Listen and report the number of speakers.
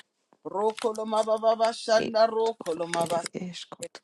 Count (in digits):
2